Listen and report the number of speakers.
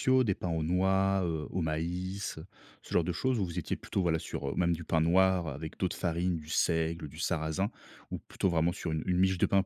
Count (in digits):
1